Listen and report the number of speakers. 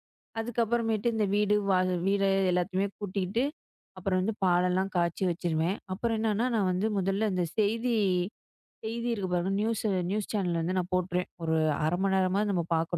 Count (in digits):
1